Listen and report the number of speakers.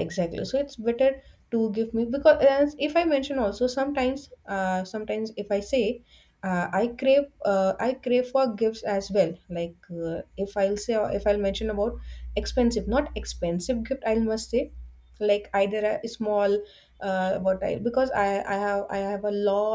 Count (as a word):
one